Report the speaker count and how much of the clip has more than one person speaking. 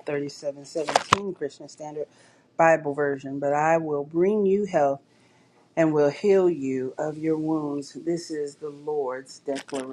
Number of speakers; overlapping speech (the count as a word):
one, no overlap